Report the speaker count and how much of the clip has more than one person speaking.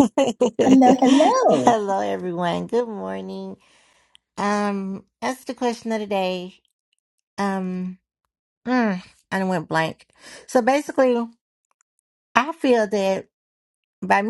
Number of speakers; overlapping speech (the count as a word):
two, about 2%